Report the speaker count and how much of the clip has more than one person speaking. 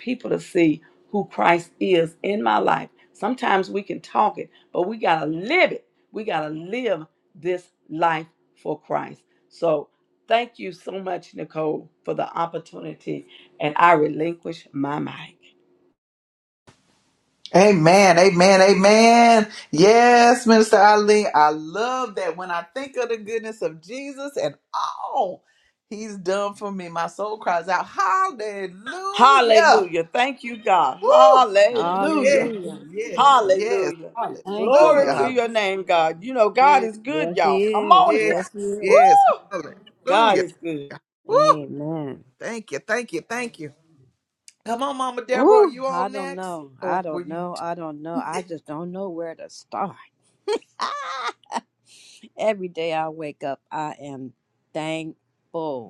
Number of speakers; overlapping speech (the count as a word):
three, about 11%